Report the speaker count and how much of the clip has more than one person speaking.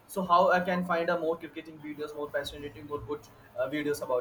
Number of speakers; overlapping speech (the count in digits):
1, no overlap